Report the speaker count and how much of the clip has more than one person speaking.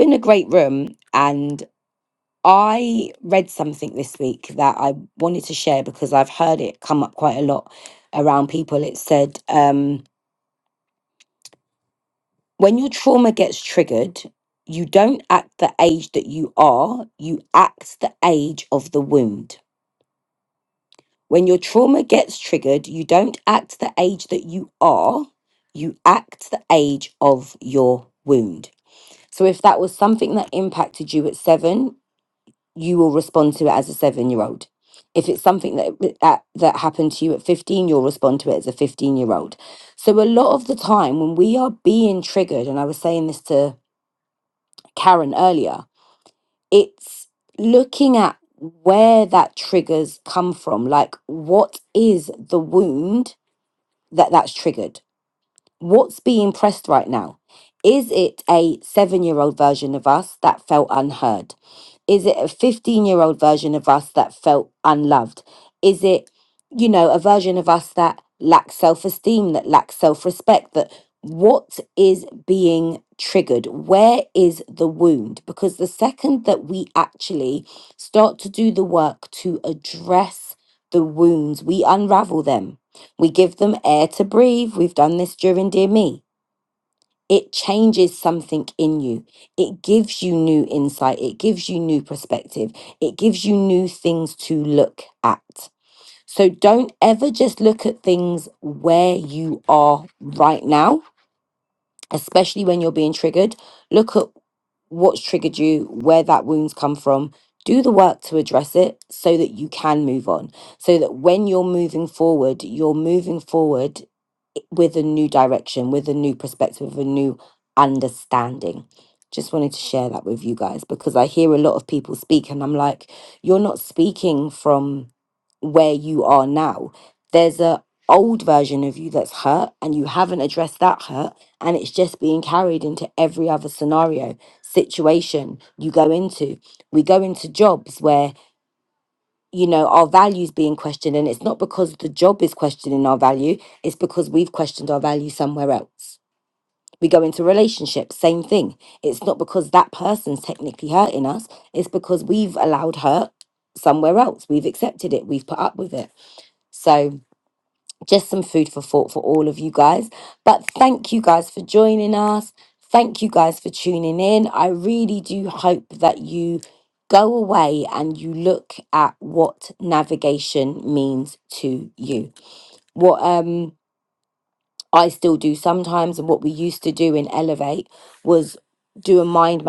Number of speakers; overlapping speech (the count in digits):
1, no overlap